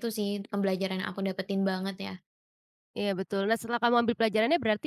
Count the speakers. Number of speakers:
two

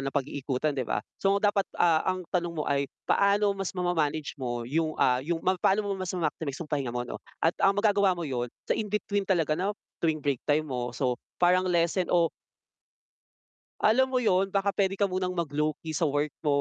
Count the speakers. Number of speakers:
one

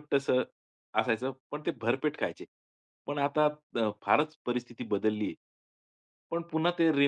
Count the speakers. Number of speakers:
one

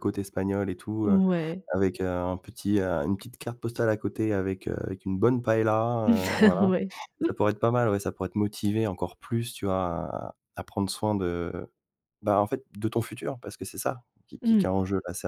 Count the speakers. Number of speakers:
two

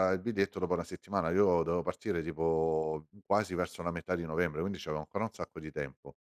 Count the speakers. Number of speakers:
one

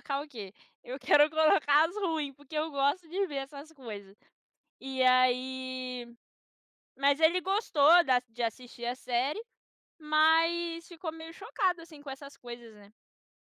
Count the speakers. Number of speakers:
one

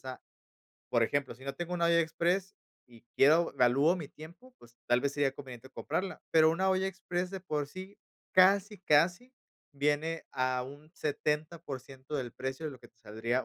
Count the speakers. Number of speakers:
one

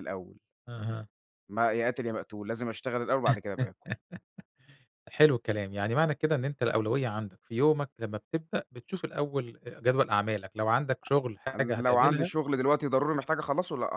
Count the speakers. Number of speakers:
two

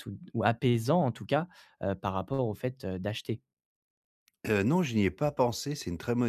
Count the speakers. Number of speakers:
two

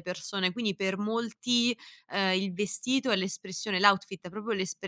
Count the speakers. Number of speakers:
one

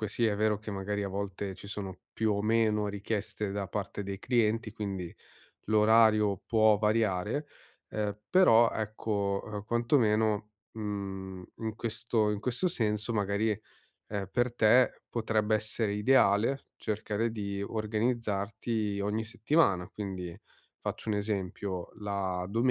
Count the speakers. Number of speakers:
one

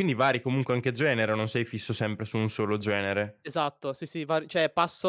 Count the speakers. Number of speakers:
two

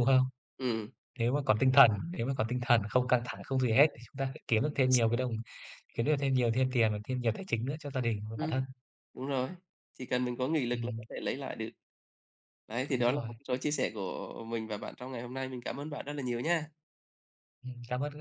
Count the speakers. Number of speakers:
two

